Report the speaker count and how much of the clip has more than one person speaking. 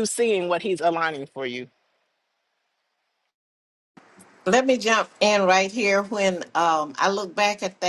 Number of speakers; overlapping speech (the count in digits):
2, no overlap